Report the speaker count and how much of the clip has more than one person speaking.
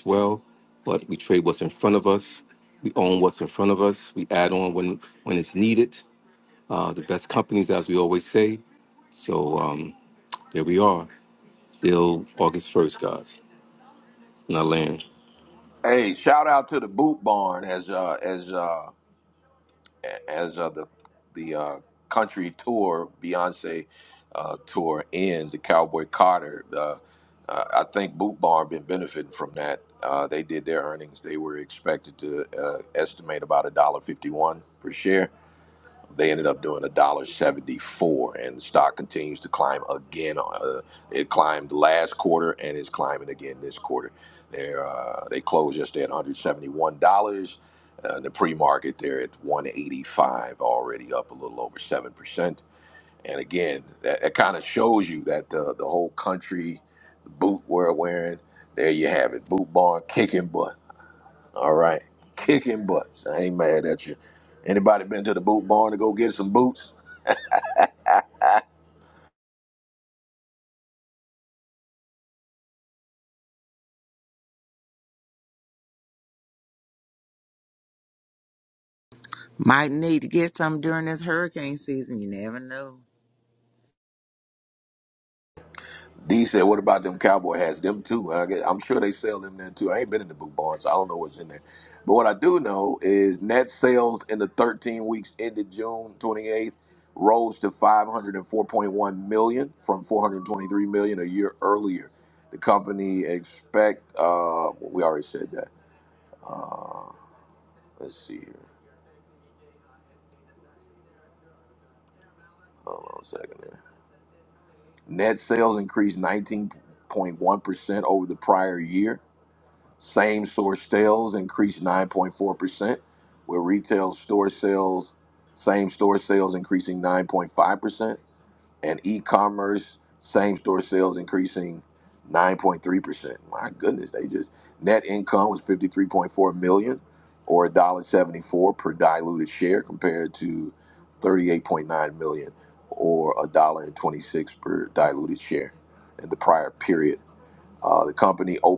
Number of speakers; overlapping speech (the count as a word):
three, no overlap